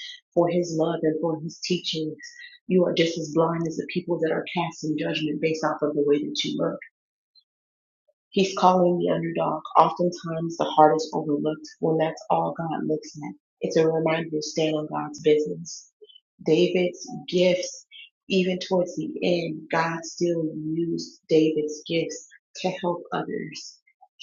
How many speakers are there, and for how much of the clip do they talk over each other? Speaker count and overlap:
one, no overlap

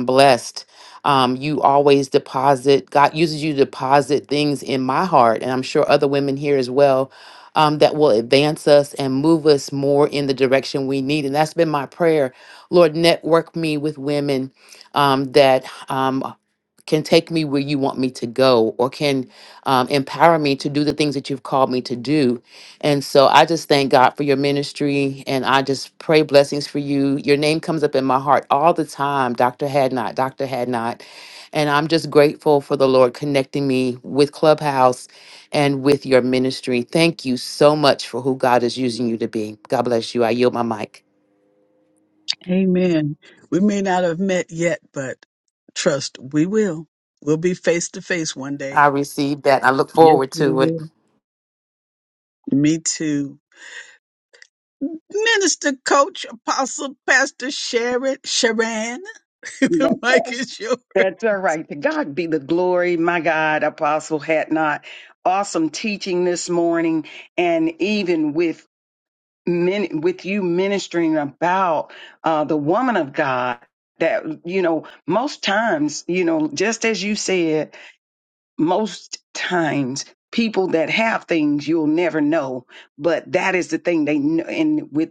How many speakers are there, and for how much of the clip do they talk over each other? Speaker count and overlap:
three, about 1%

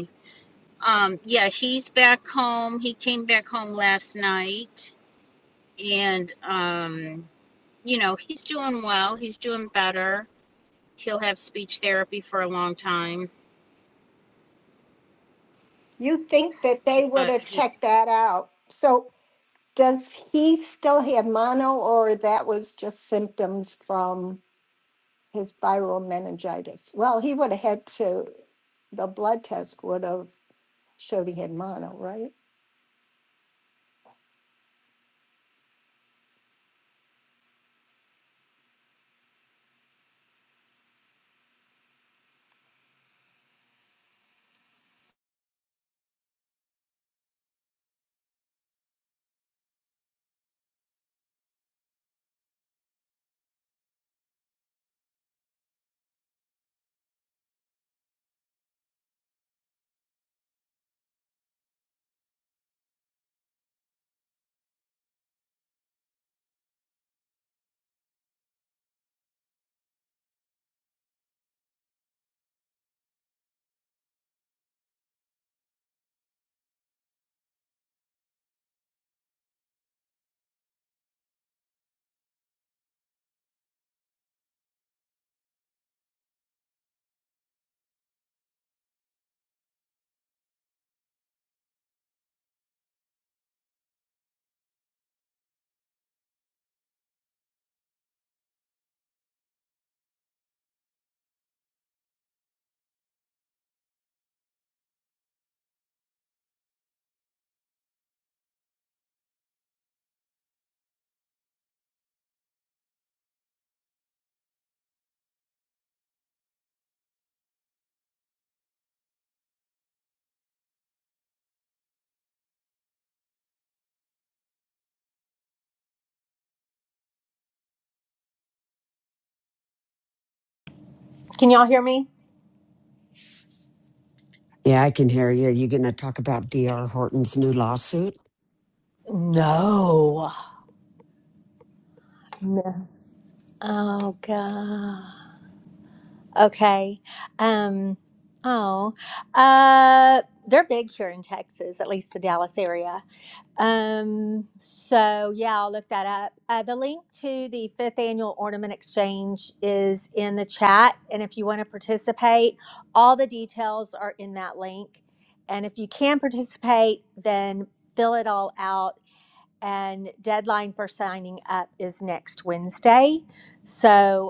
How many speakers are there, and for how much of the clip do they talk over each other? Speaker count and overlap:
four, under 1%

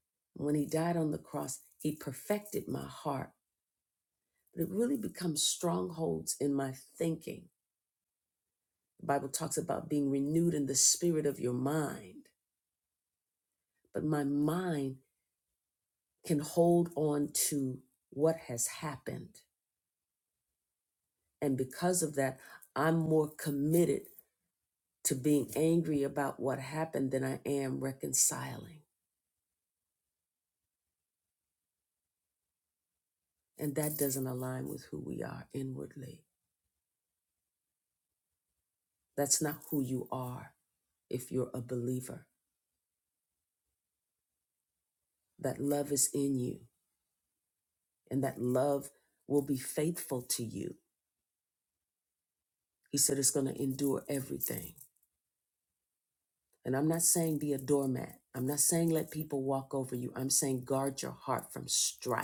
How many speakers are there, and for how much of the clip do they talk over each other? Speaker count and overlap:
one, no overlap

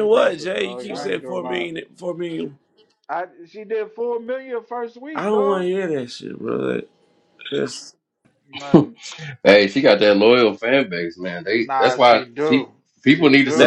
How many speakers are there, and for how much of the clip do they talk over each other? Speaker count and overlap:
three, about 28%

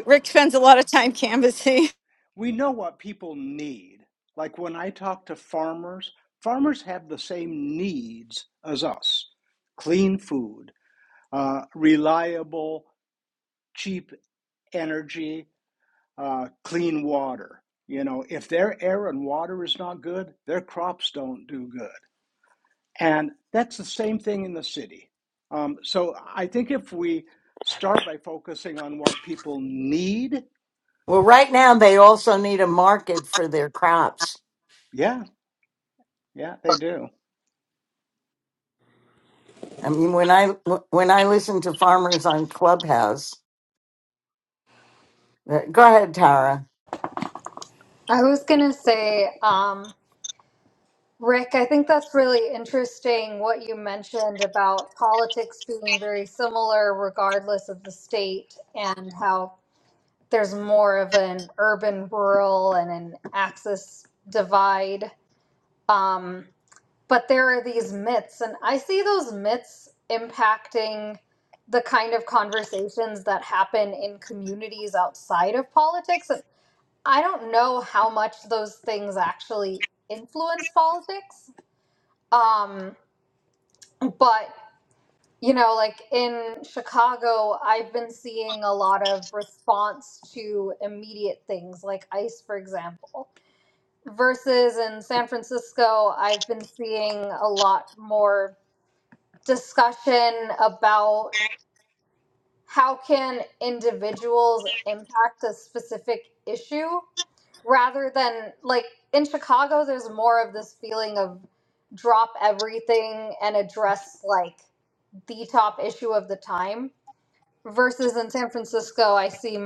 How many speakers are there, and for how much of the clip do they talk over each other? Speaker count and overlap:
four, no overlap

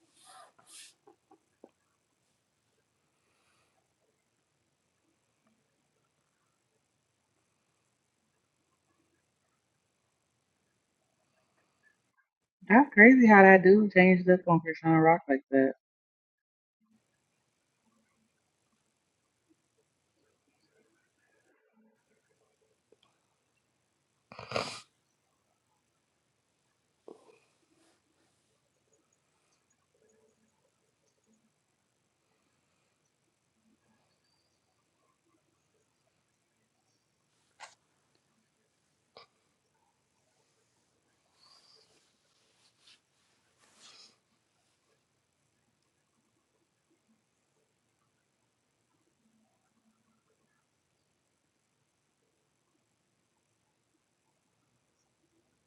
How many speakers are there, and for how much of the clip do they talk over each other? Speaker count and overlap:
one, no overlap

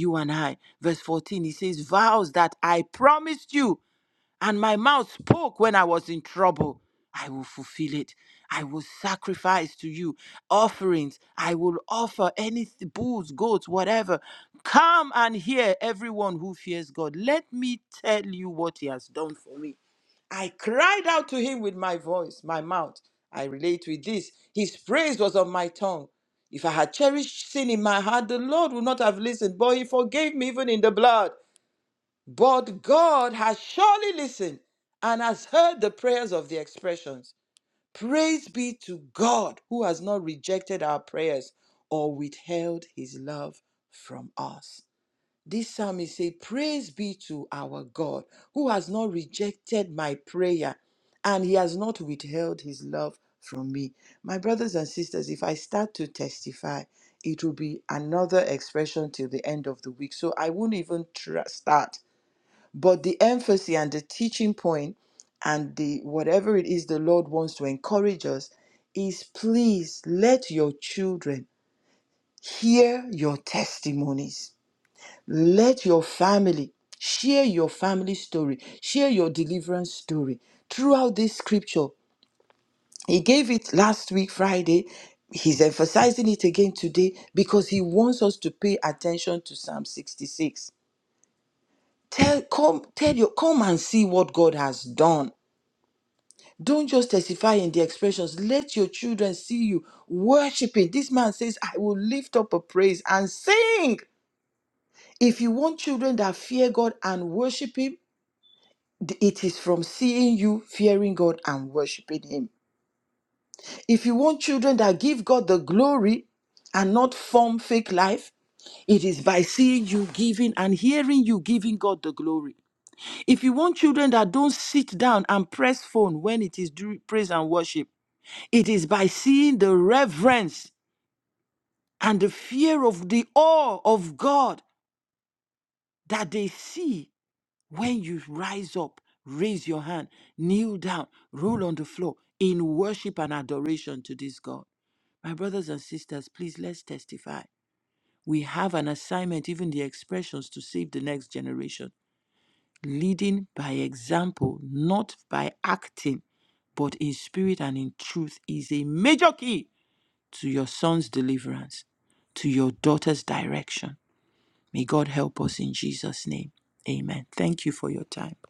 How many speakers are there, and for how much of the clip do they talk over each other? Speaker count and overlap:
one, no overlap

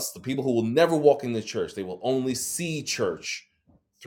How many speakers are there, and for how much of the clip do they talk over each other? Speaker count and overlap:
one, no overlap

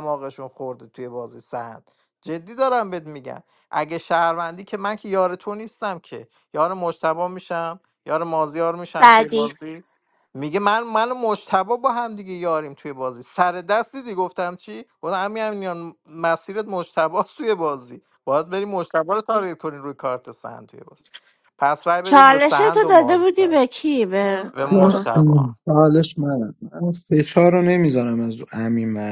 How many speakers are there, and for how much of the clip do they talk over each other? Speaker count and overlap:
three, about 9%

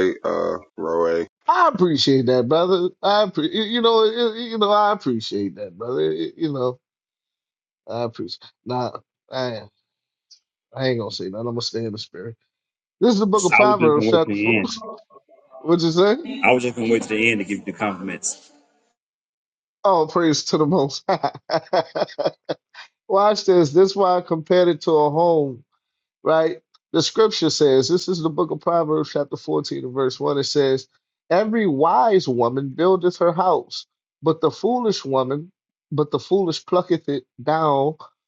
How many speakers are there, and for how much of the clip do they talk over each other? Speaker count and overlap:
three, about 3%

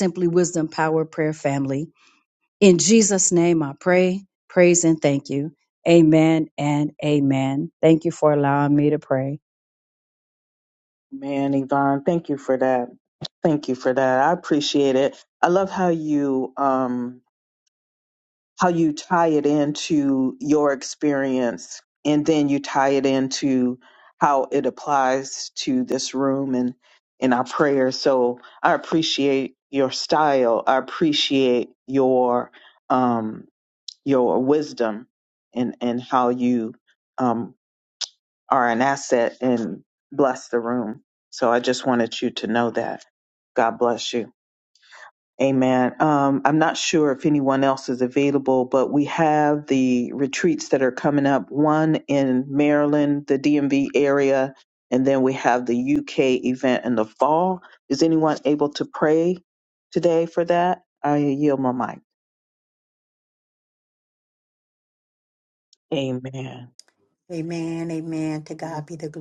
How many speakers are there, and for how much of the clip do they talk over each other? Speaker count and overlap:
three, no overlap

